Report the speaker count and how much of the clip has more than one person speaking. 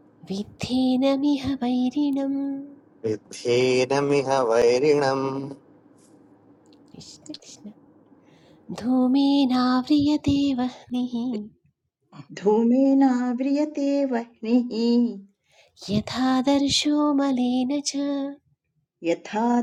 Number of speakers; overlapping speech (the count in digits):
3, no overlap